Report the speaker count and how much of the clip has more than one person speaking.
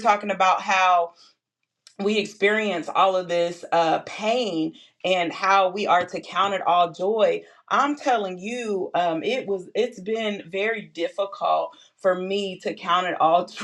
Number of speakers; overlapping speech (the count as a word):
one, no overlap